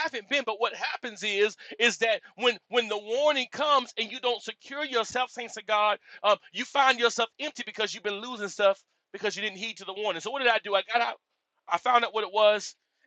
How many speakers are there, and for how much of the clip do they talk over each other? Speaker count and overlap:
one, no overlap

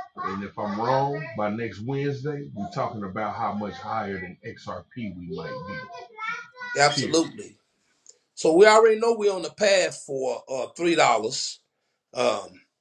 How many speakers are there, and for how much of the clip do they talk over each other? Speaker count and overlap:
two, about 3%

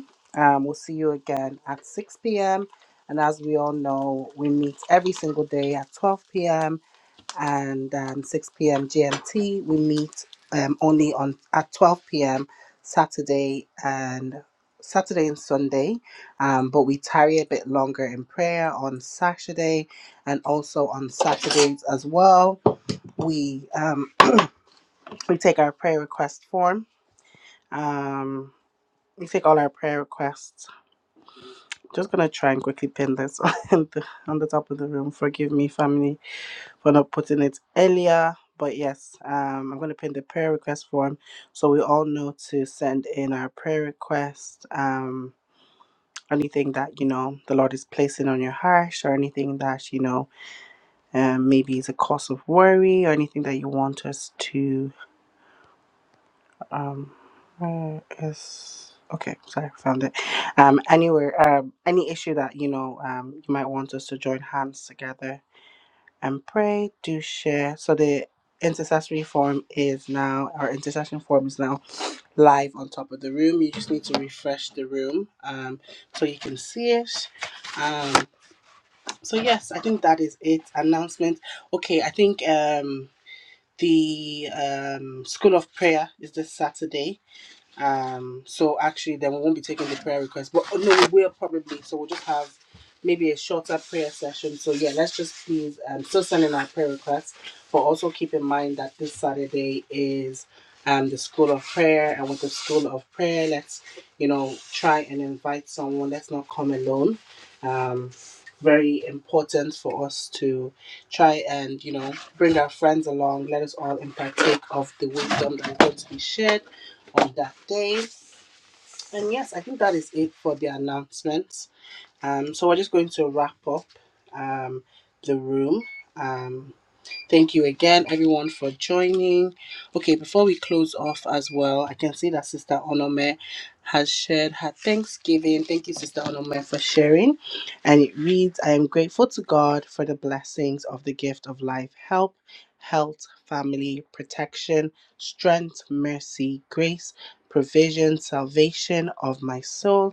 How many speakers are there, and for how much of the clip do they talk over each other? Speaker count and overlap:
one, no overlap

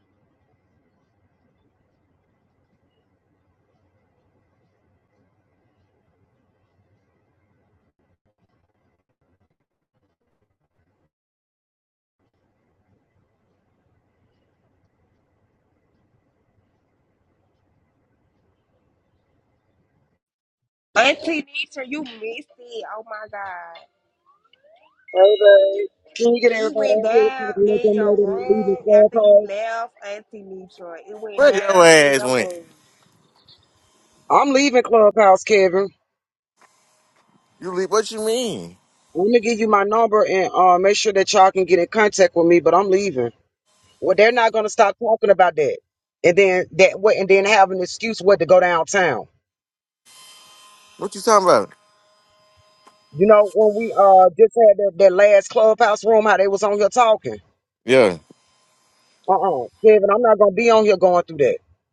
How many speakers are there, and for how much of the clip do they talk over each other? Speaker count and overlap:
three, about 7%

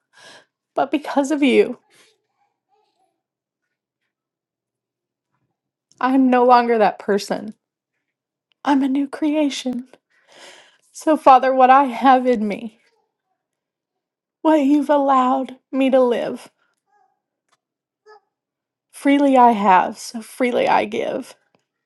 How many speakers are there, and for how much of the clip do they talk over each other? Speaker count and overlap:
one, no overlap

